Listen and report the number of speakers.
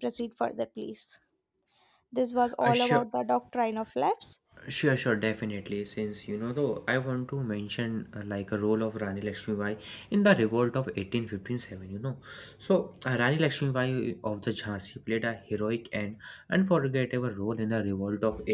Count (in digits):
2